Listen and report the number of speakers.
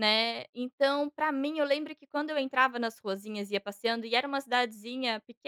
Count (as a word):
one